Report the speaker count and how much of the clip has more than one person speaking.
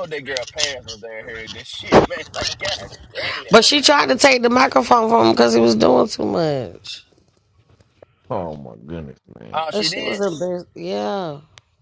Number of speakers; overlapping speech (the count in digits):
3, about 6%